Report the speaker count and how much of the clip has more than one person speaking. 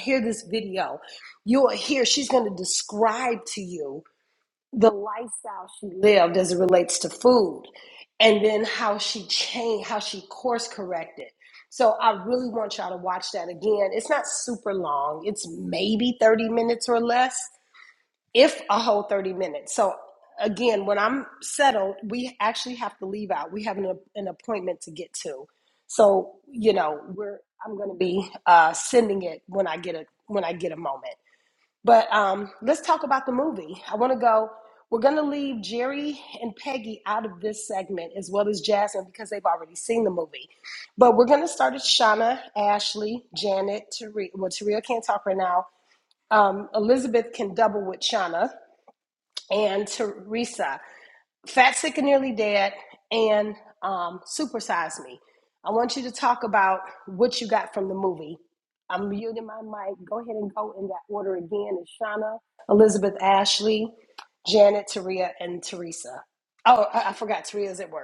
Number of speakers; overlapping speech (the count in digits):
1, no overlap